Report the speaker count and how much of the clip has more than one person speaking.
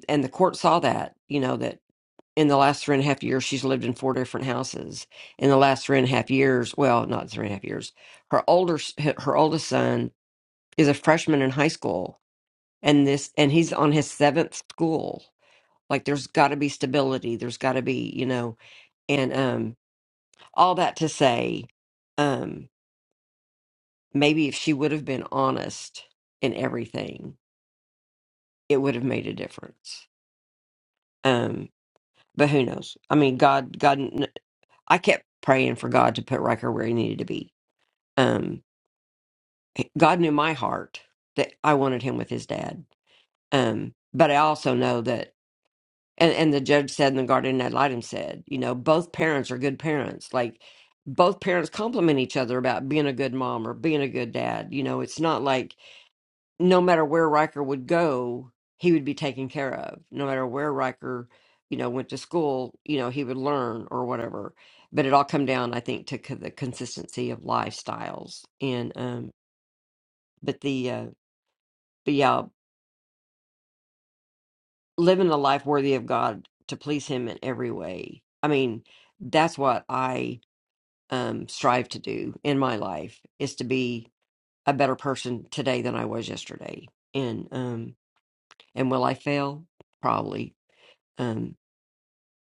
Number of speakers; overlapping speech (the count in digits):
1, no overlap